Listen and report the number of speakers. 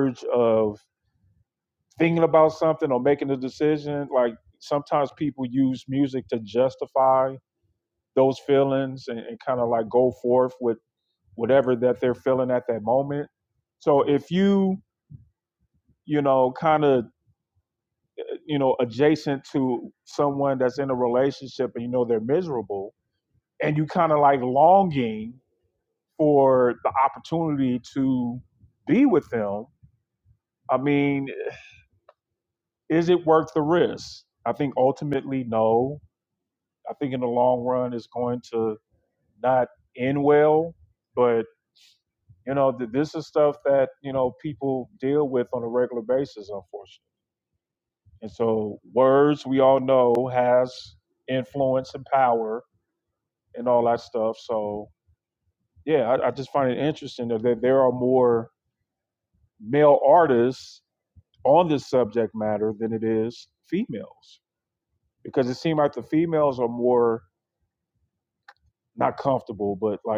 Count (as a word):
one